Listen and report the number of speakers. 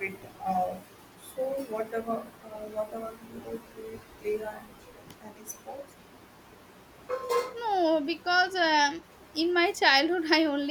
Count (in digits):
2